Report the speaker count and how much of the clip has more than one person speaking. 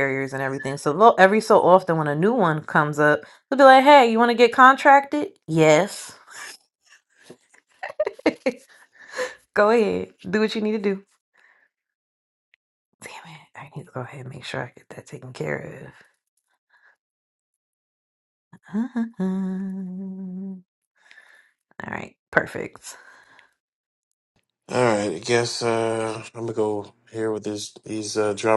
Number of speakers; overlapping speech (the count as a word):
two, no overlap